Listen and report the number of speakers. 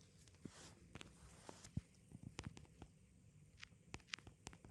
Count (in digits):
0